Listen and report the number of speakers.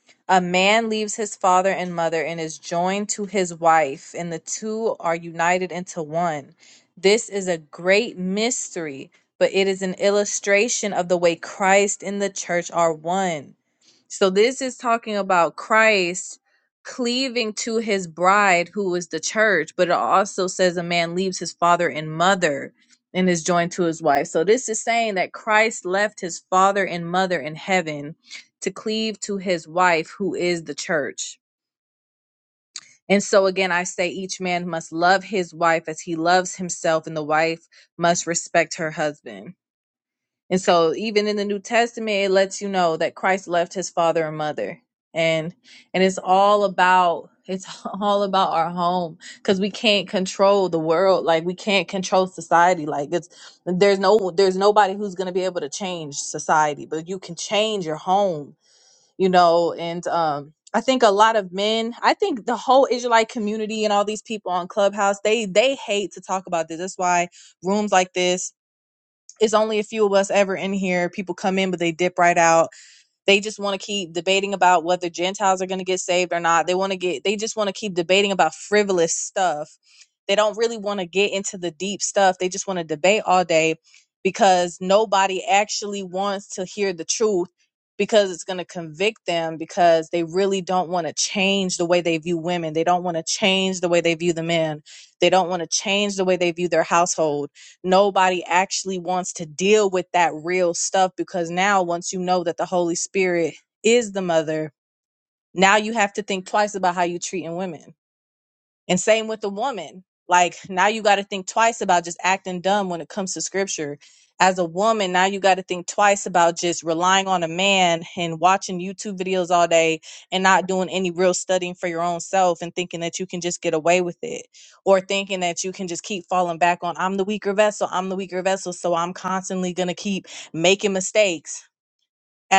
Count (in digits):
1